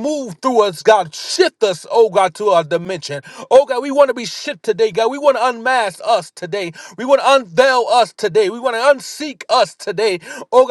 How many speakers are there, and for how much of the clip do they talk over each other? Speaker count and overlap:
one, no overlap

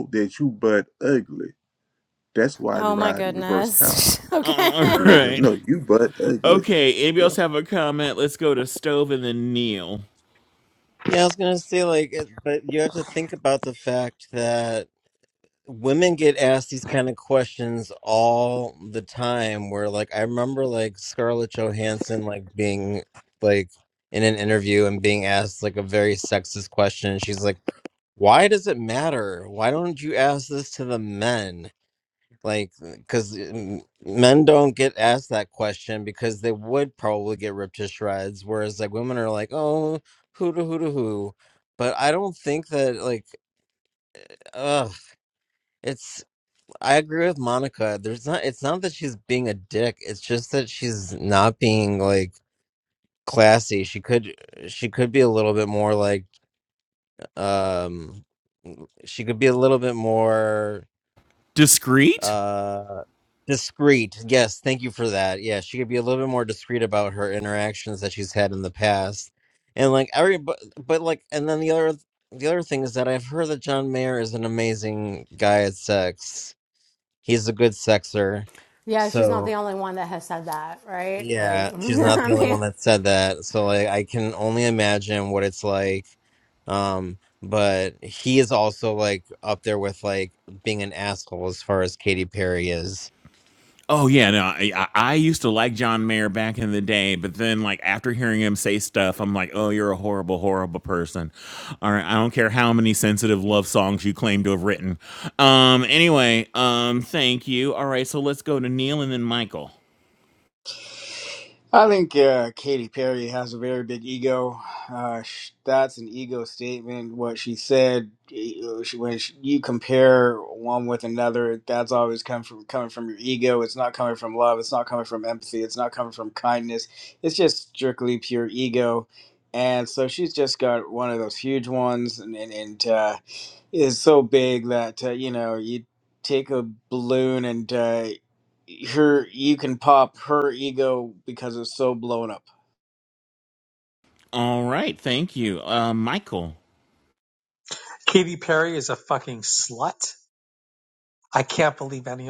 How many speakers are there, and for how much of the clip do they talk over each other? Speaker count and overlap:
six, about 3%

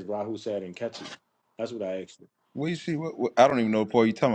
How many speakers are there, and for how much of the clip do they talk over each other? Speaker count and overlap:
two, no overlap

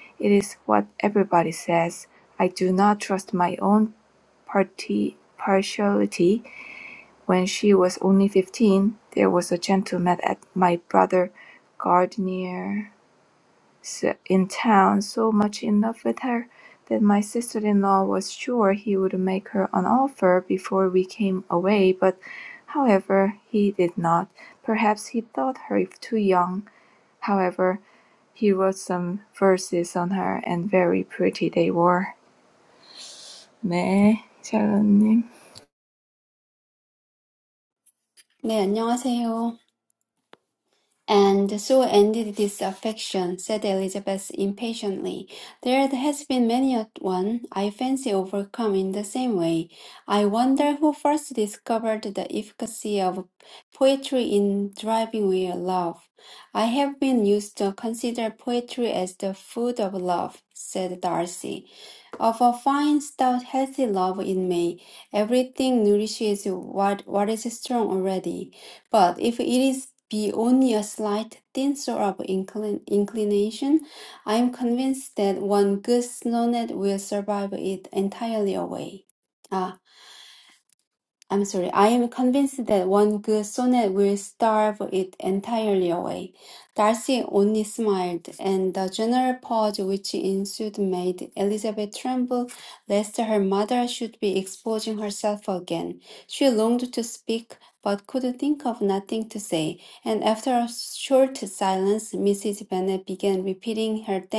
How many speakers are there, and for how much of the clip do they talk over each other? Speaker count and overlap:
two, no overlap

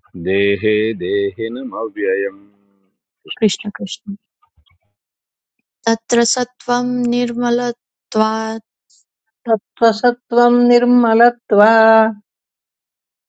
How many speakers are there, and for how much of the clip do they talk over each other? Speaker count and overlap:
three, no overlap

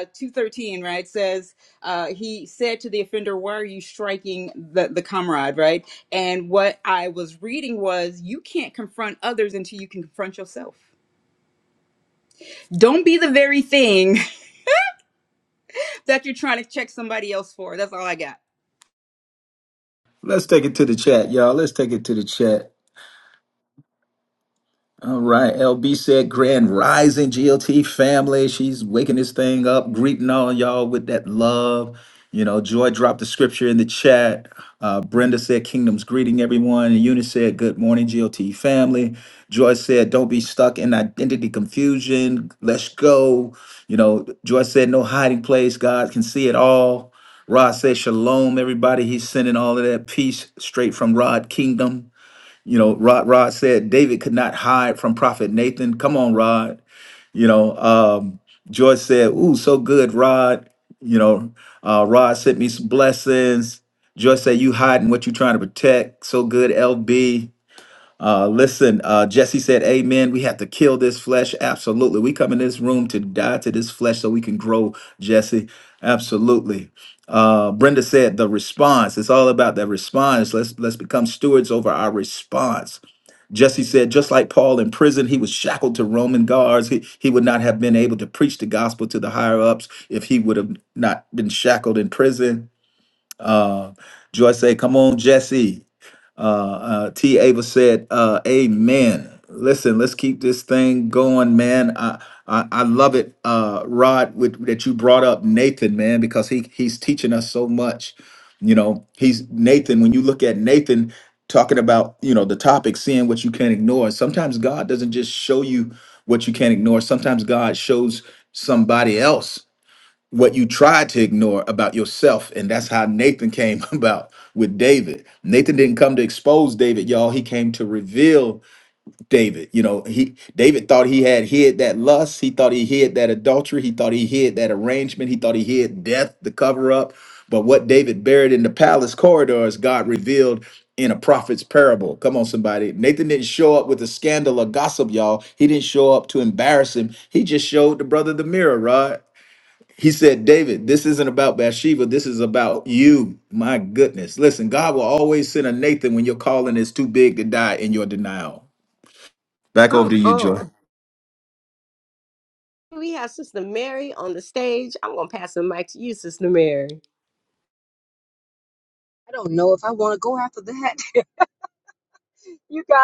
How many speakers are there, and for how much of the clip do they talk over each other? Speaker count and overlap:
four, under 1%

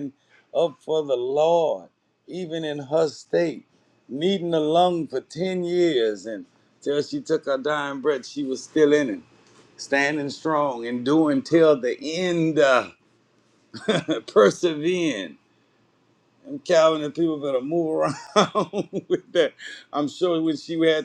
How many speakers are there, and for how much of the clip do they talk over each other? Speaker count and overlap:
one, no overlap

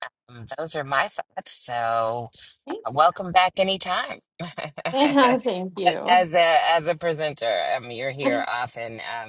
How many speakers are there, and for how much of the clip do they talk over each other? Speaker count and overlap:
two, about 1%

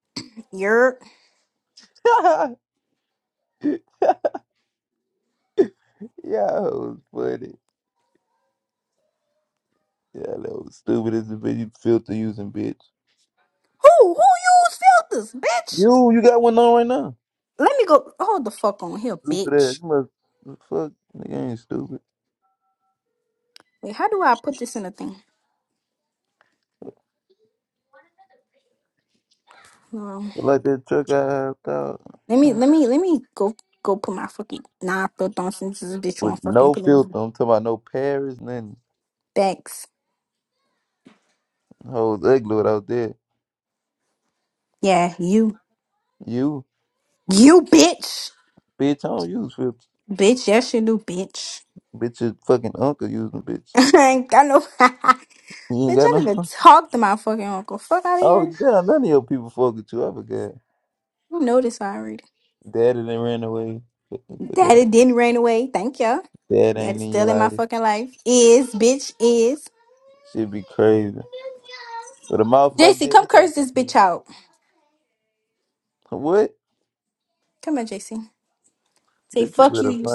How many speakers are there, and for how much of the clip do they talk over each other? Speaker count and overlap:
two, about 6%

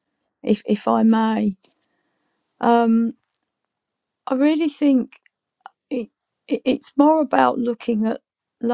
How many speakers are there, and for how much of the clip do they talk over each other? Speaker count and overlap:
one, no overlap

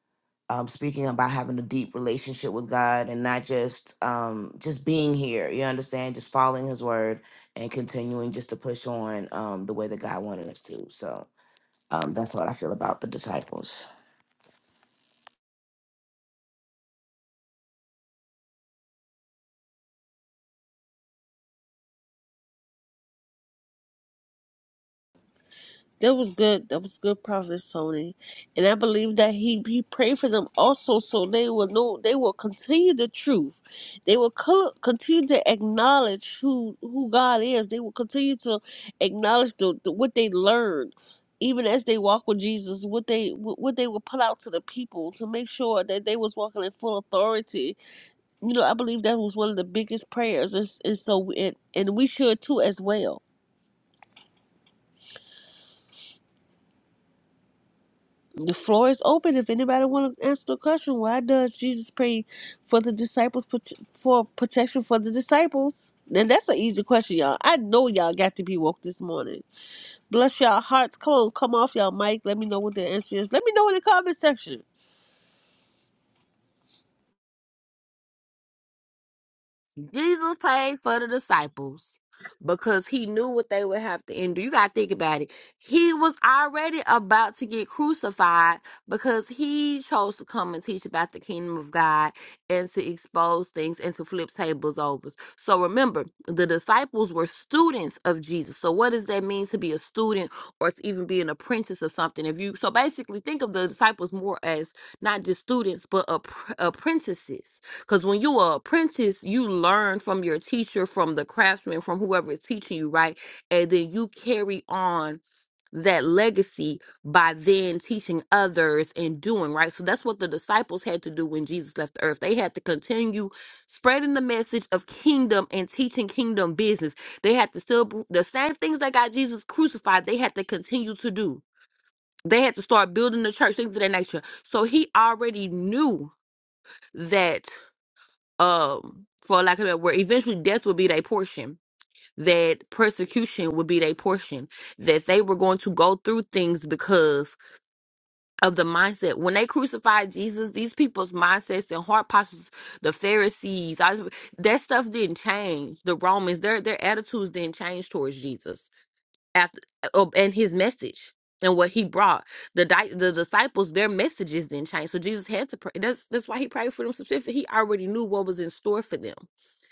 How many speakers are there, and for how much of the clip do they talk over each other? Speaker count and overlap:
three, no overlap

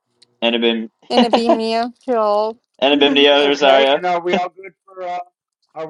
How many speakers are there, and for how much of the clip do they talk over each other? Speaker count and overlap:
three, about 17%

